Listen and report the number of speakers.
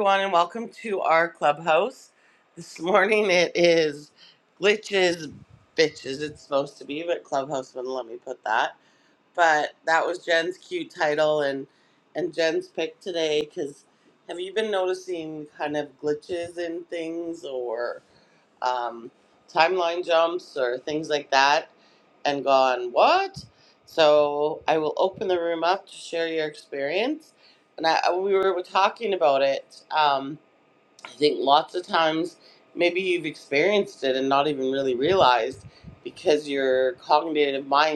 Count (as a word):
one